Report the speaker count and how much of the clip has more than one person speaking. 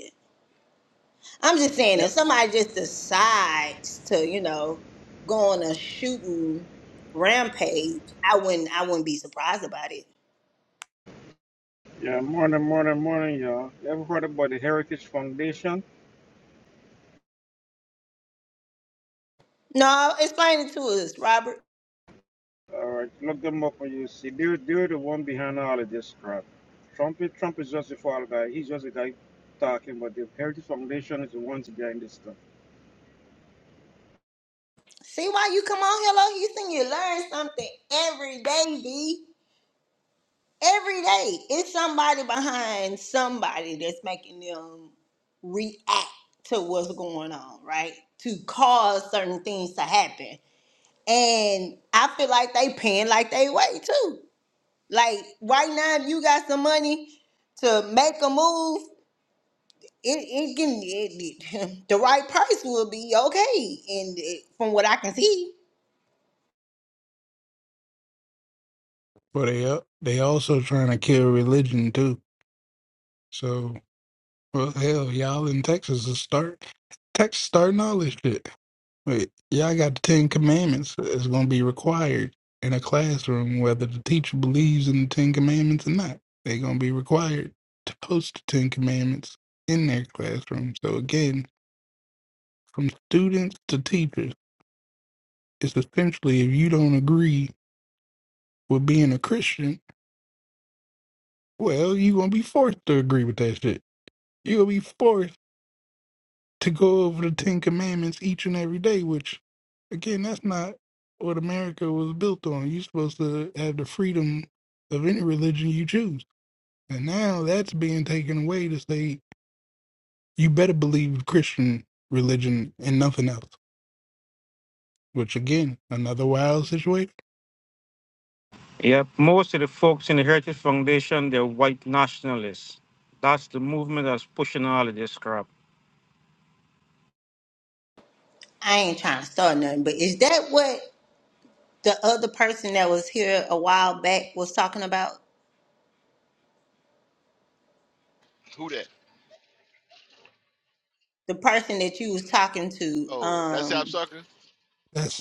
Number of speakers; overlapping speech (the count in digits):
4, about 1%